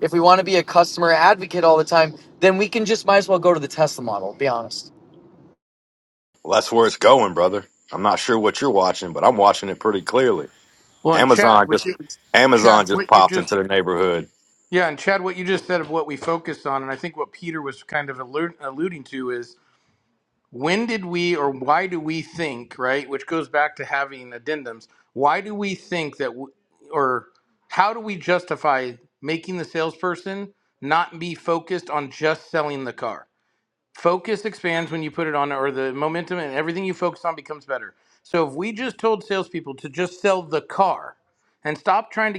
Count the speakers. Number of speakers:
3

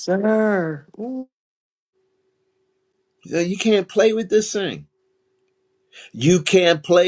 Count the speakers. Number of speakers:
2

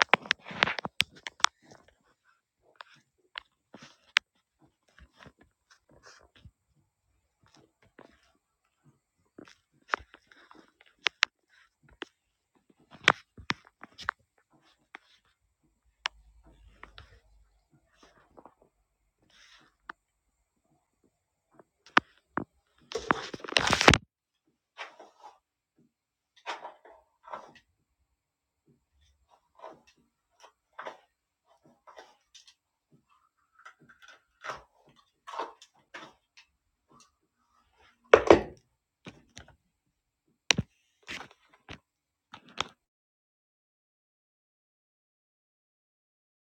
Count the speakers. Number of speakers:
0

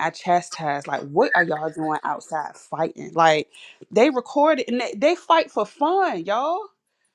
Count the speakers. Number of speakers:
1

